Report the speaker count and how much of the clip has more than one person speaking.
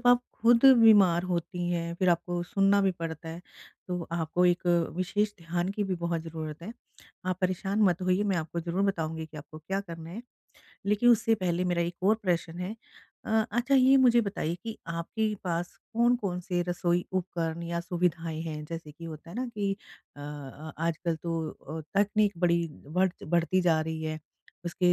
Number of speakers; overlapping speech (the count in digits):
1, no overlap